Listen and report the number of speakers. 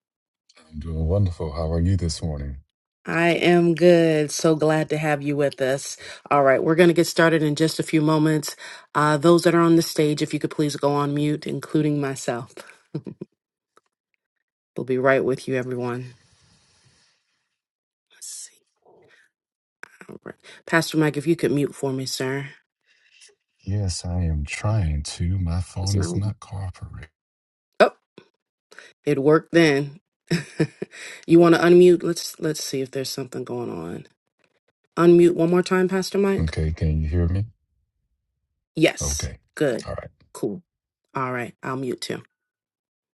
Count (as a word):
two